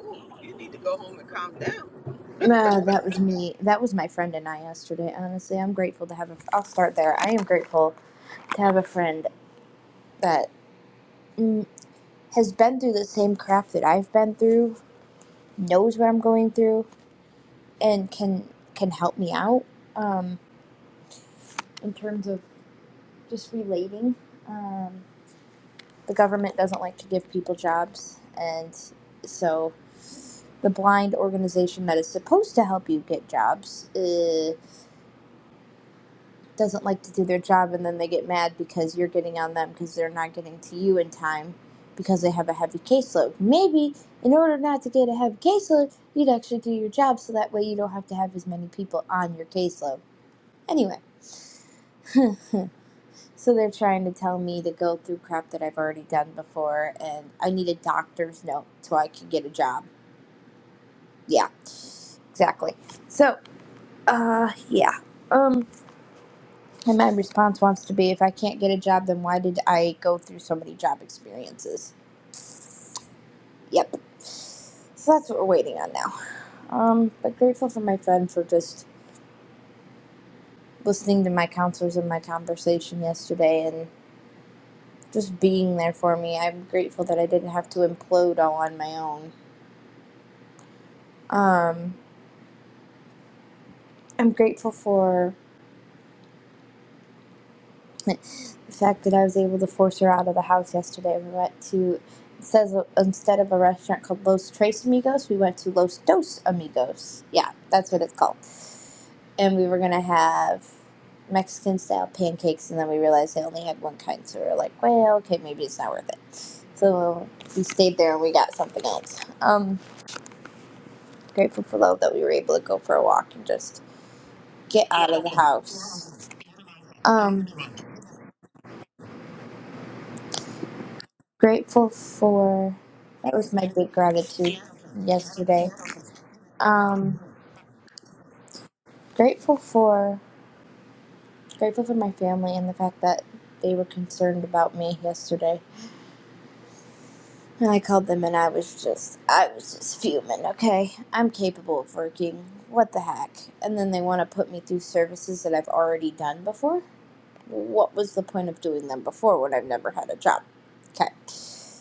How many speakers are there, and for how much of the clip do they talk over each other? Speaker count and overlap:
2, no overlap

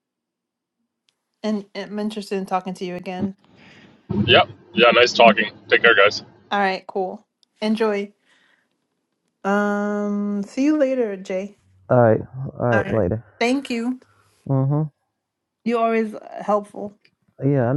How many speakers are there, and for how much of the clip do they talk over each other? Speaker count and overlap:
3, about 2%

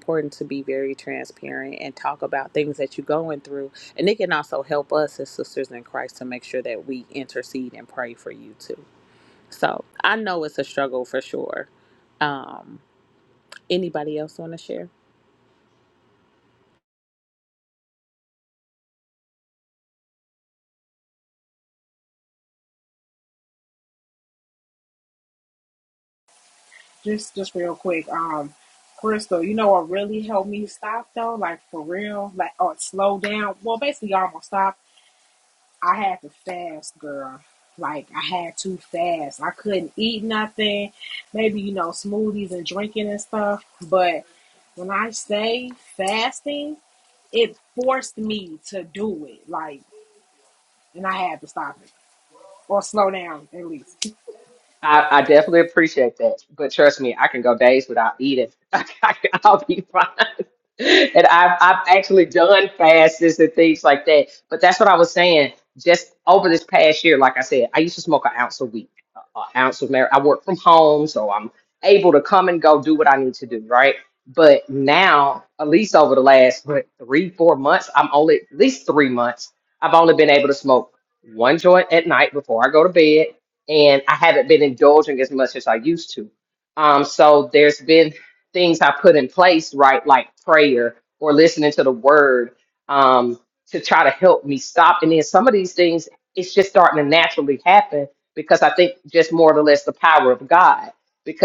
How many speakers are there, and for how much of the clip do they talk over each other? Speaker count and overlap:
3, no overlap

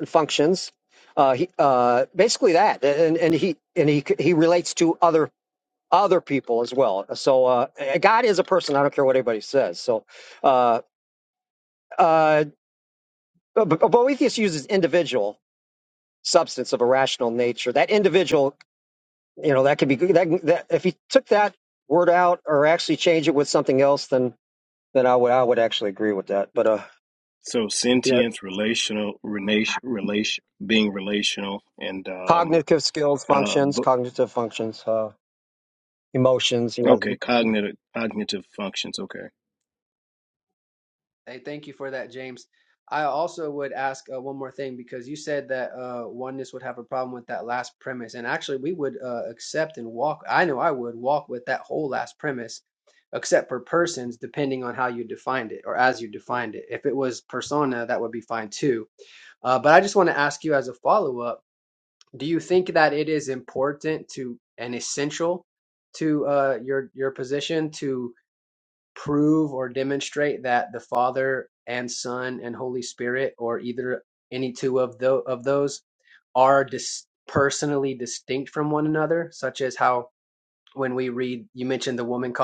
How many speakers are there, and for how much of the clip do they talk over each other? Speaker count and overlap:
3, about 1%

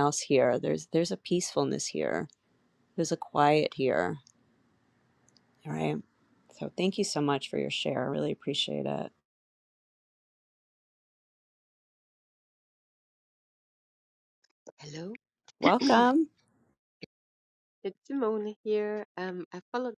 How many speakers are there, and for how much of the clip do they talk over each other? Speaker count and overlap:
2, no overlap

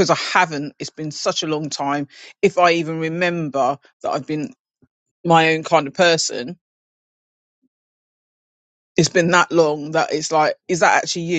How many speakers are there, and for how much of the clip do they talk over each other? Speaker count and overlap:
1, no overlap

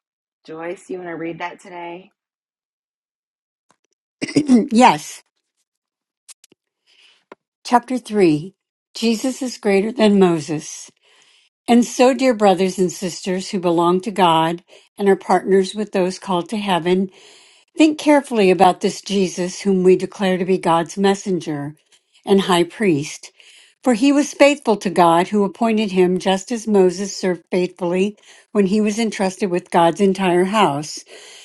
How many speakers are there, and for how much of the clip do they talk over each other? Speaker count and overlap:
2, no overlap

